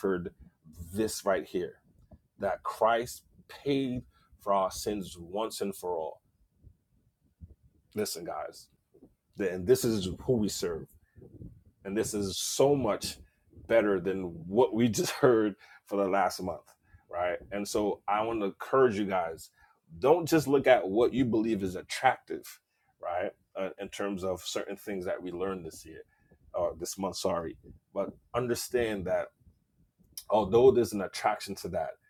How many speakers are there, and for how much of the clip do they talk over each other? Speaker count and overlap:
one, no overlap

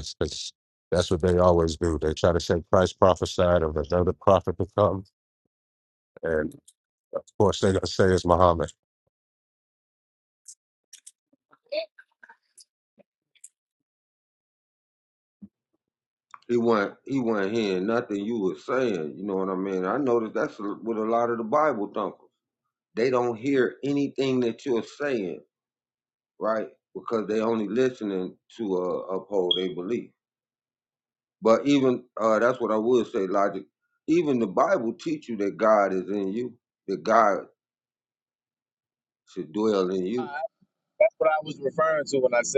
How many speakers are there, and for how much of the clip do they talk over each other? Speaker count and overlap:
three, under 1%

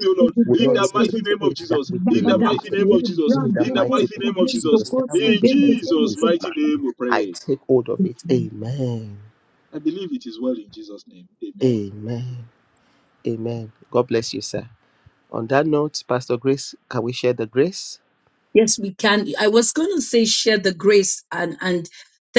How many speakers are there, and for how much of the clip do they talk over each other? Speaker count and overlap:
three, about 31%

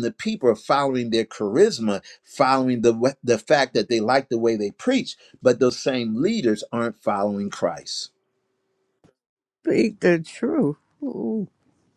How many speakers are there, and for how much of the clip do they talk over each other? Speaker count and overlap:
two, no overlap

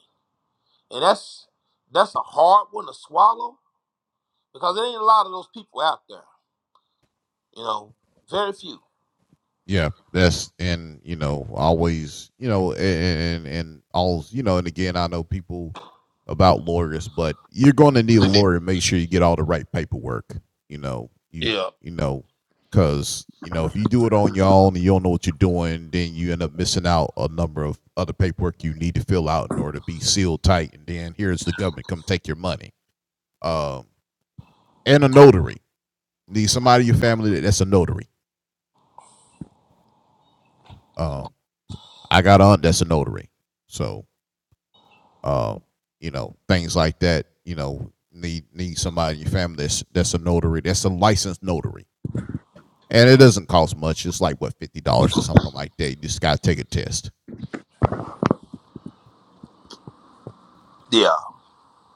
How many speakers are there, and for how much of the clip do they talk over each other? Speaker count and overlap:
two, under 1%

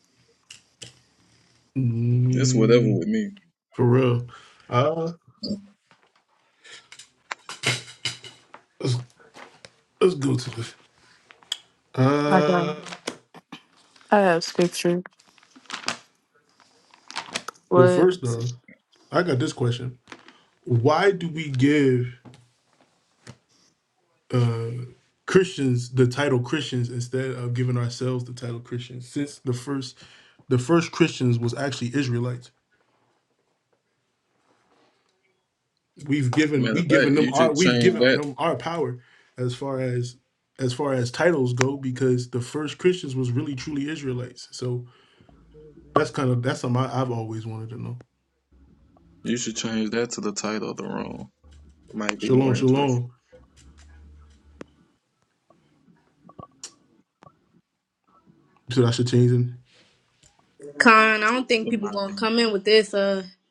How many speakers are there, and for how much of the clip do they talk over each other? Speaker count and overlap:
four, about 7%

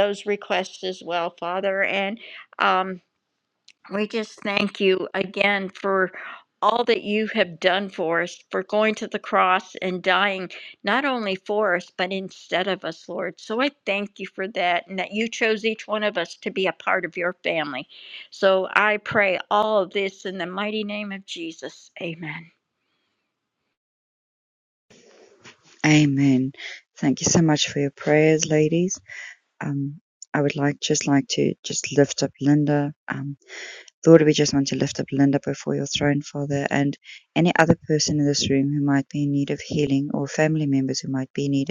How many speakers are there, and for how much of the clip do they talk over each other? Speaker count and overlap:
two, no overlap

